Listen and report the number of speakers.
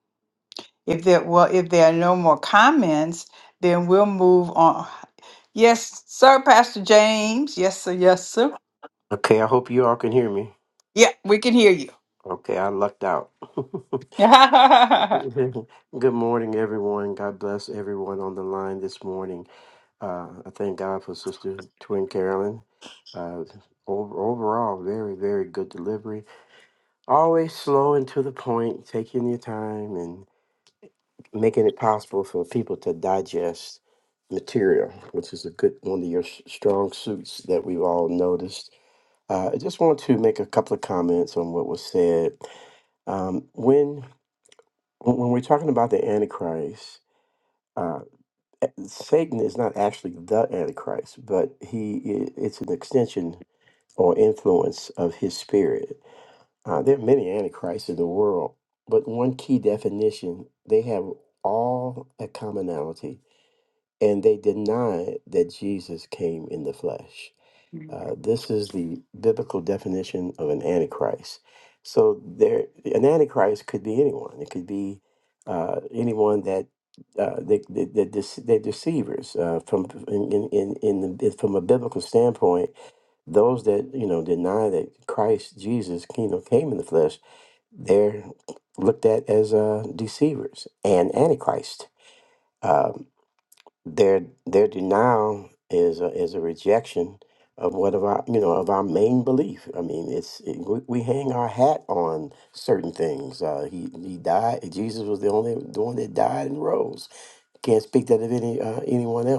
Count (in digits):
2